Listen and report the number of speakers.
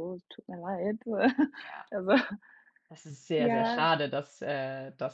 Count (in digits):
2